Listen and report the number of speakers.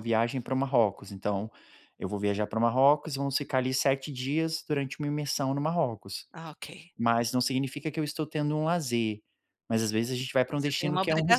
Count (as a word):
two